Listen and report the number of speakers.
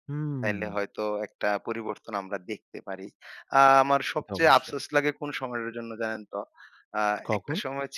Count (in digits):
2